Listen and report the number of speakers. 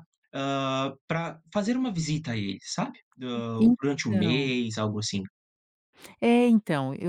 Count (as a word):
two